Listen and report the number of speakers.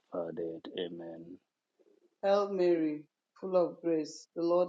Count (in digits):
2